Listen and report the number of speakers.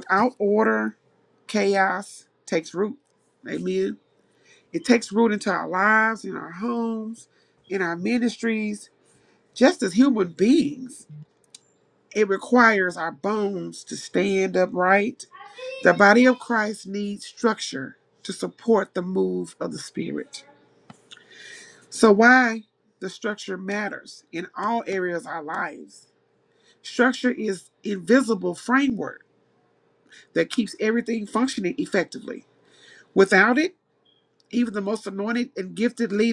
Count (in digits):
1